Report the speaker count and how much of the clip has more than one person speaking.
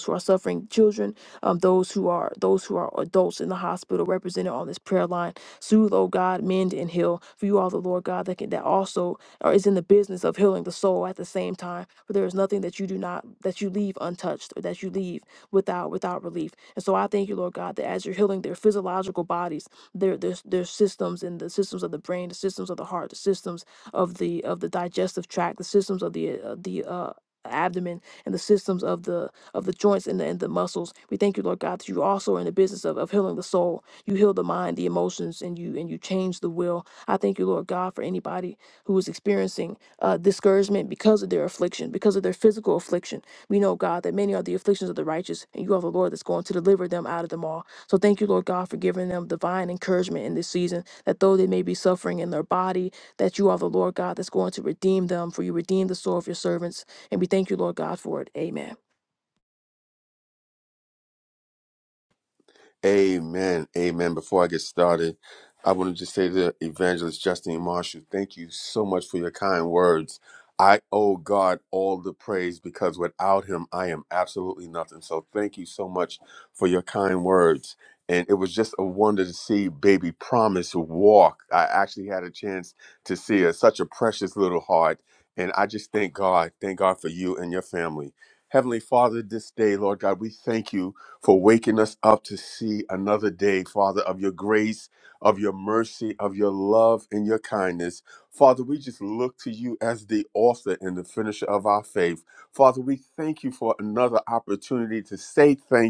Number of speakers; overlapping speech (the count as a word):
two, no overlap